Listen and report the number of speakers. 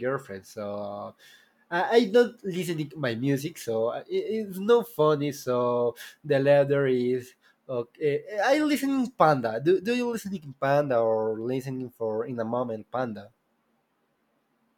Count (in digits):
1